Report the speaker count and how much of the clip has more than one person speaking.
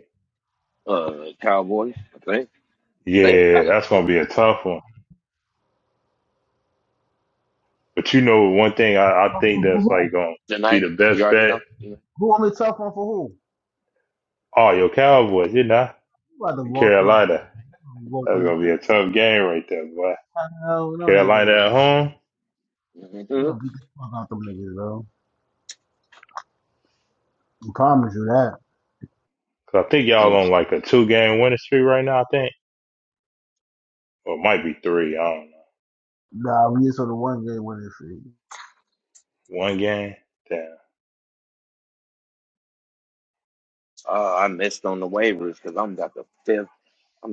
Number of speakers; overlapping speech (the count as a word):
three, about 8%